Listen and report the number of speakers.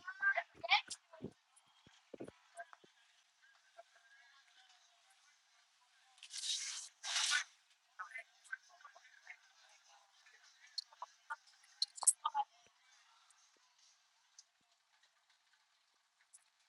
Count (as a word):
zero